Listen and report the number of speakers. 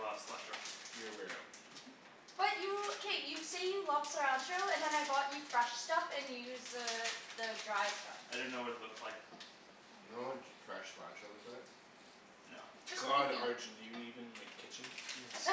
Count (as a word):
four